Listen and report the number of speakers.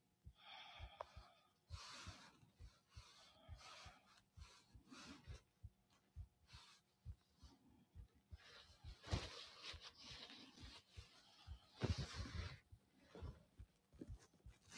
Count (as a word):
zero